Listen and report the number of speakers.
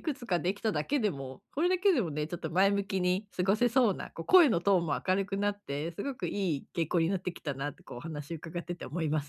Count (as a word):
one